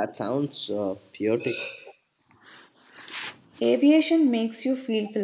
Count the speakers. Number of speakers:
two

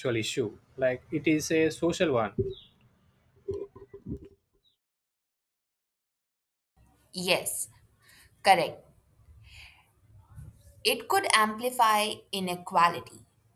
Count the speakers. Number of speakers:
two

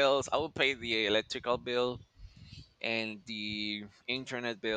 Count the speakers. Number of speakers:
one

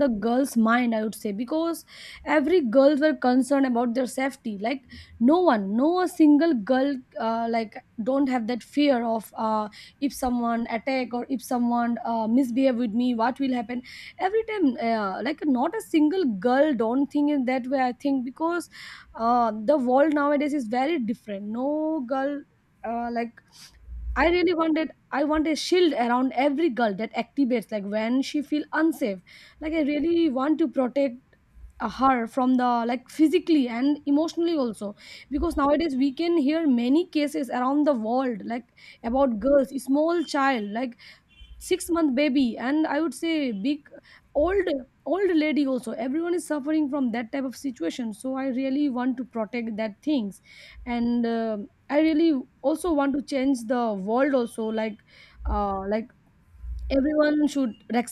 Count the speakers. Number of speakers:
one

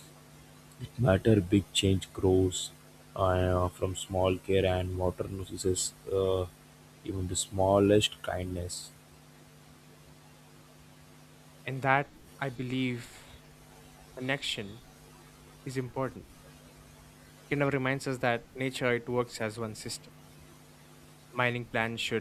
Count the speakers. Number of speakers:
two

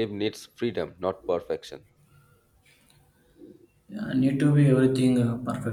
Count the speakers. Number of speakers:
two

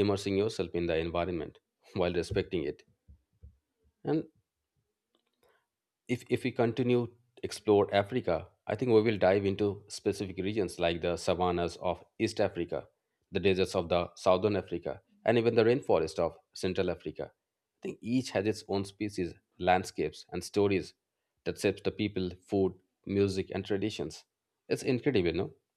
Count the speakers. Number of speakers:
one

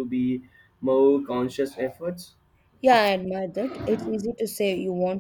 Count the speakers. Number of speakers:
two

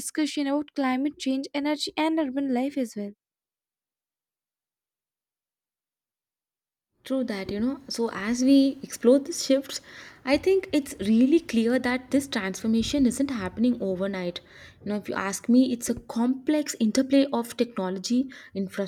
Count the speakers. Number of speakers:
two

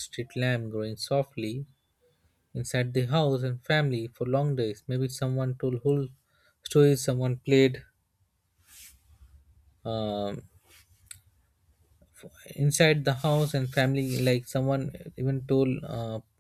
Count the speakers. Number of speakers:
one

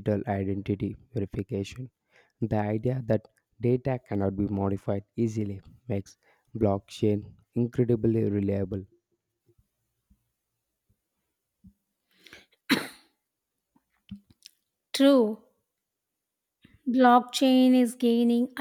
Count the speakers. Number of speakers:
two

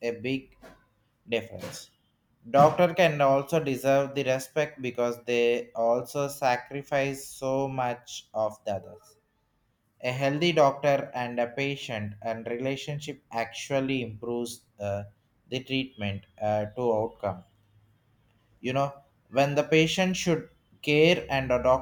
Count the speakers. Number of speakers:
one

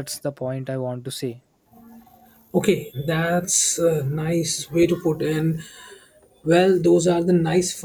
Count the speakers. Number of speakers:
two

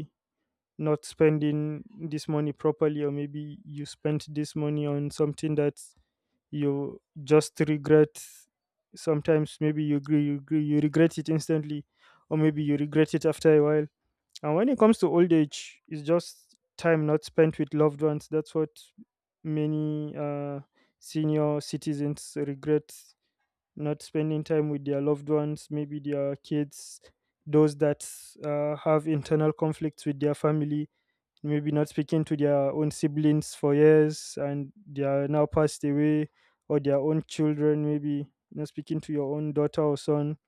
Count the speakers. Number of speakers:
one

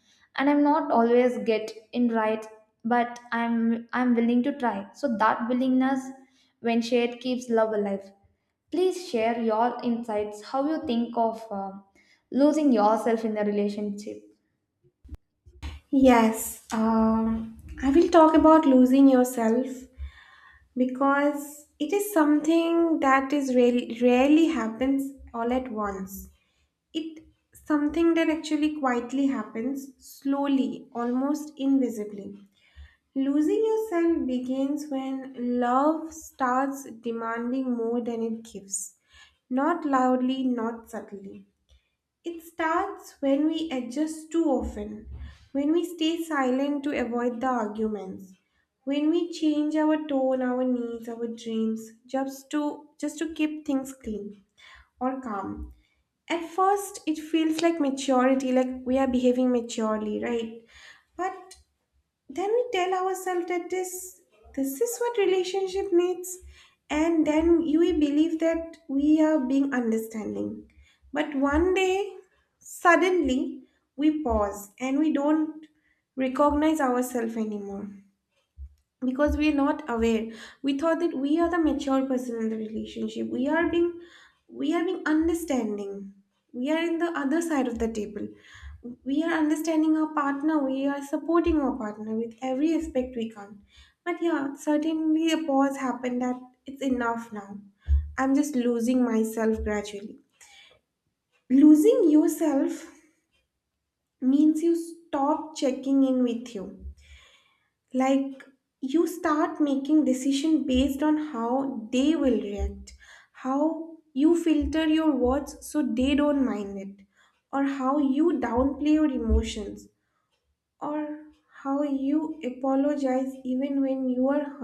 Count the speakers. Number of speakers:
two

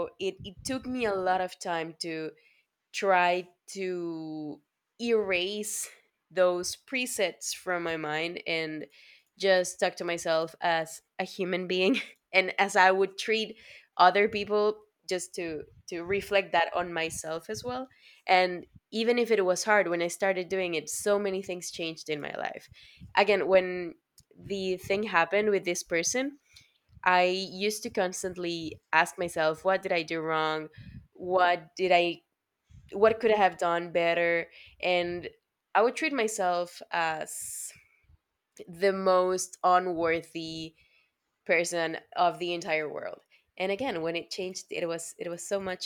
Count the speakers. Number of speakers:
one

